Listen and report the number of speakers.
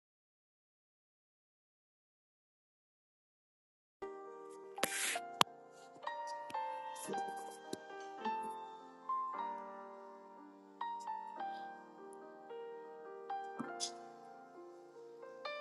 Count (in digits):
0